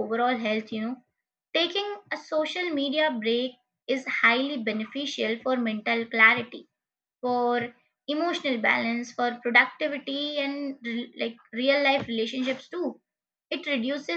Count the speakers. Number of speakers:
one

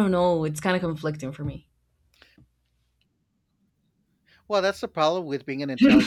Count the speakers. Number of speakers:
two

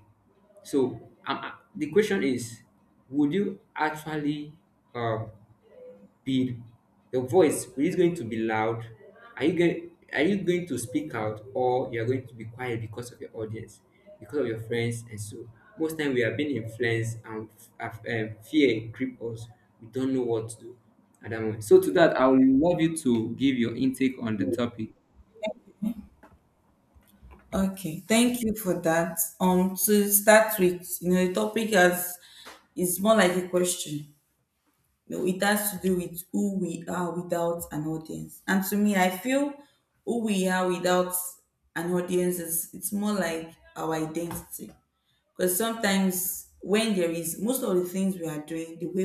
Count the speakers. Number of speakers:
two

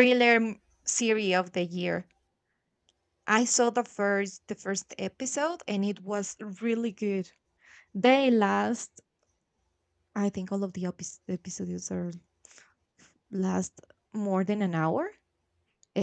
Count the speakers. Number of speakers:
one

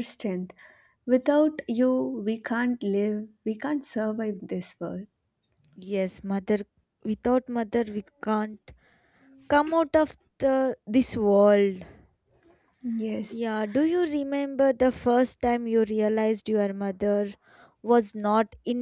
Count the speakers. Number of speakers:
two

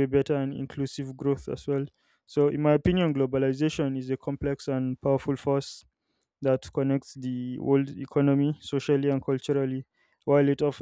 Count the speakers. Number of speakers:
one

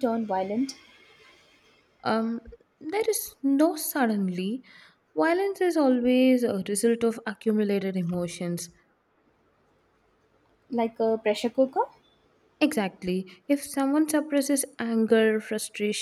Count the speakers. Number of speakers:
two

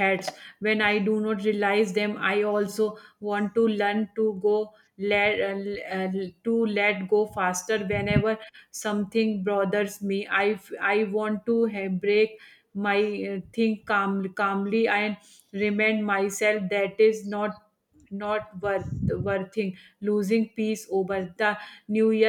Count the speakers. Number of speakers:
one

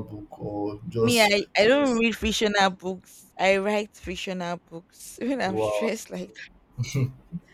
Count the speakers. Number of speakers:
two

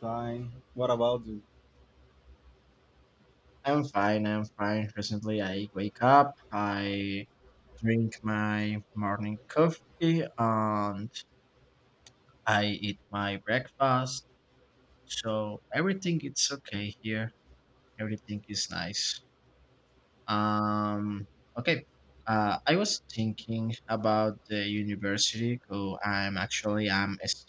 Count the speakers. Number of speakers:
two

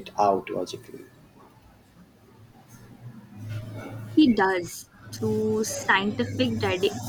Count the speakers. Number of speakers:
two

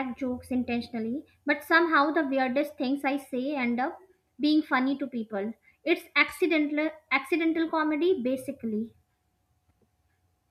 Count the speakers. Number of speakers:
one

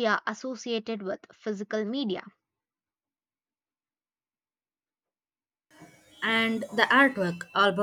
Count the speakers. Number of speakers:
two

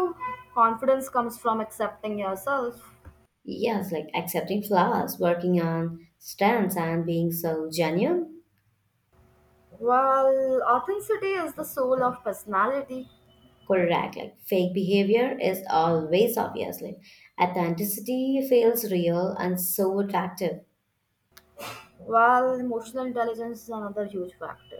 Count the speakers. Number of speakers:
two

